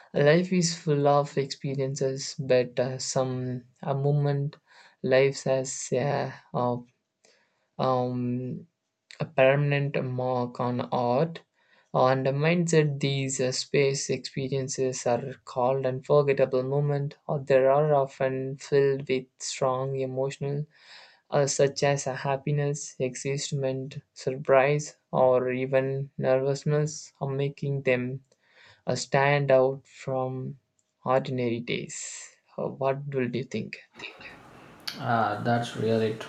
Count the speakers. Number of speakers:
two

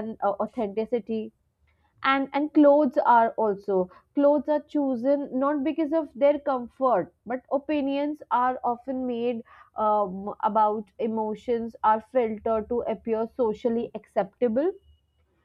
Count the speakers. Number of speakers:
one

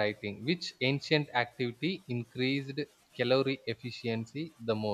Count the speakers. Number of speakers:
one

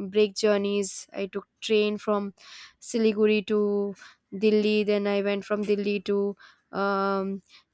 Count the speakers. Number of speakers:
one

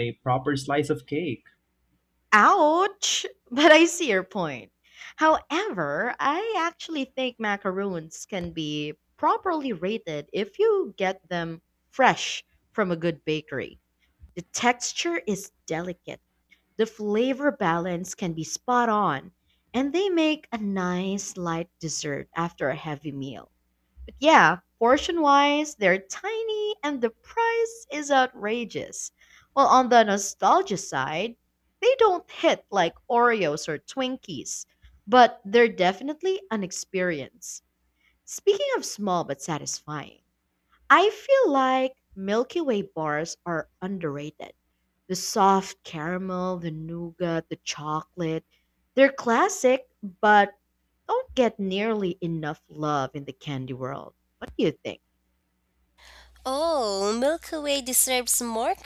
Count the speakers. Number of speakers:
three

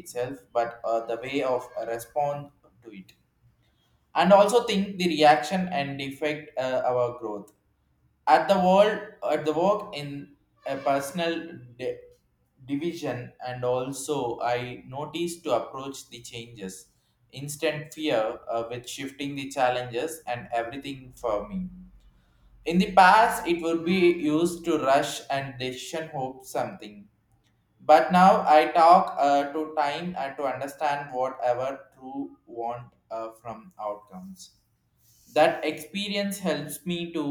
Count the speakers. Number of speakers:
one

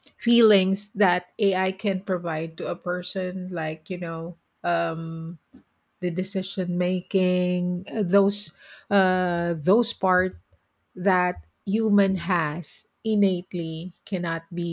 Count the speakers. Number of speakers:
one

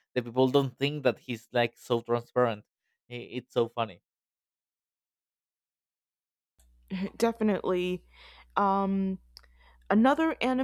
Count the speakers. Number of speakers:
two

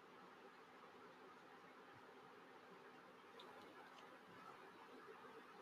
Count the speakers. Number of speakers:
zero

